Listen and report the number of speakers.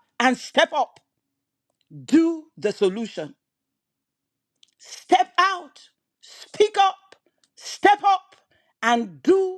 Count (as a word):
one